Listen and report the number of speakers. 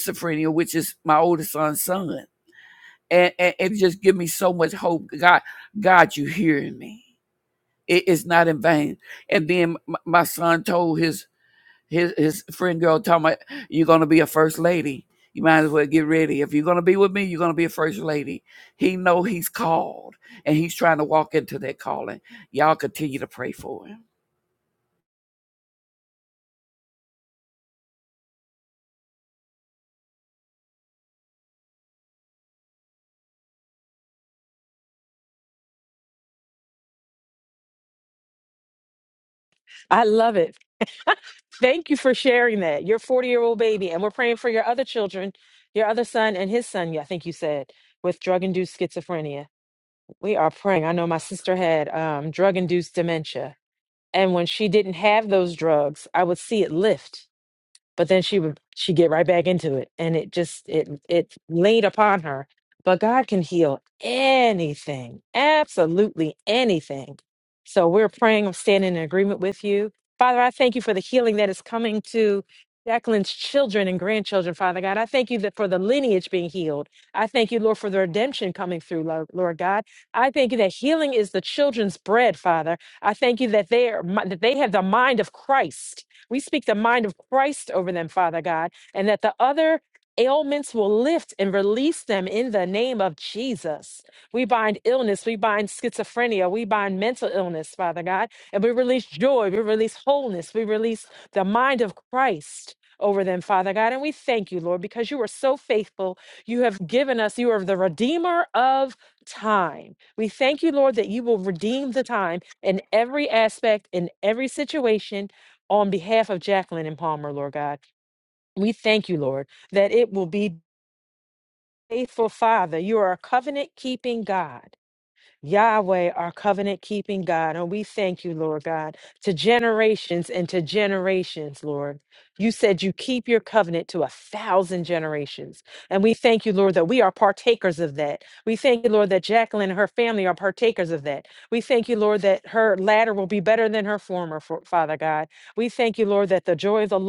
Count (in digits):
2